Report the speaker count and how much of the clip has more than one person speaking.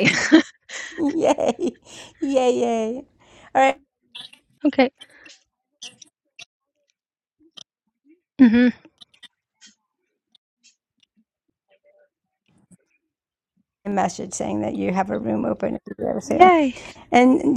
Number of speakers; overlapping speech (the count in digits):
2, about 1%